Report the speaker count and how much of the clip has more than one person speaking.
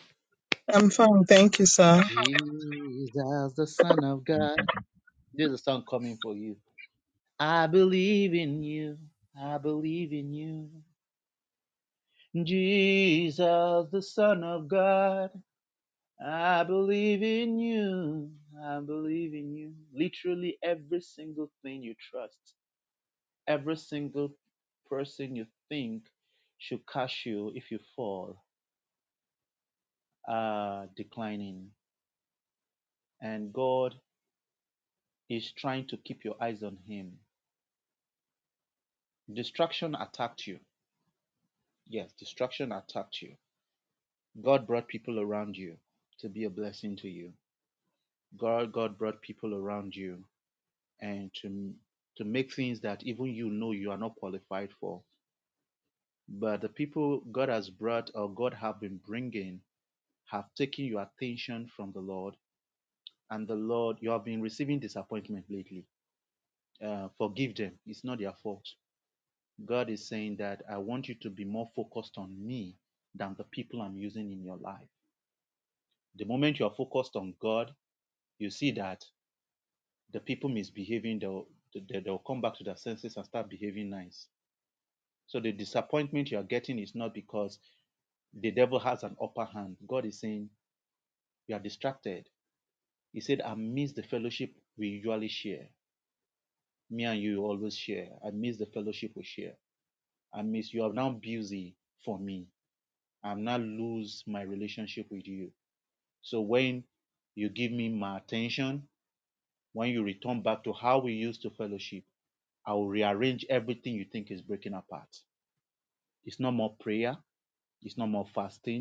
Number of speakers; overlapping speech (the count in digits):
2, under 1%